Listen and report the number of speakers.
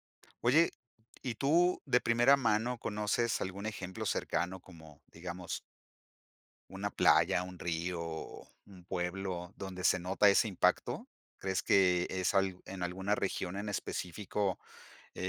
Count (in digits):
1